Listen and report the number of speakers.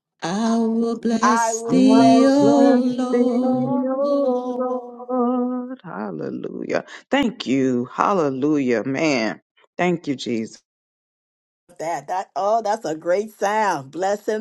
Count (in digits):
3